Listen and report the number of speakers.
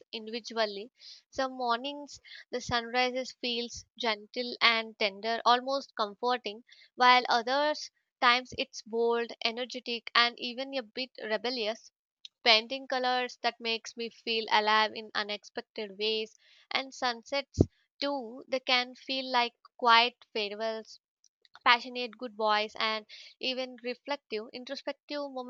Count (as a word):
one